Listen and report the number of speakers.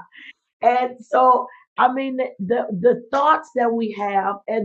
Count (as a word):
one